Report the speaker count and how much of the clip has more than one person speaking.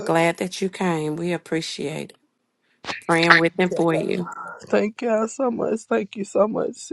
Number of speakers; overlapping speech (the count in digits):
2, about 2%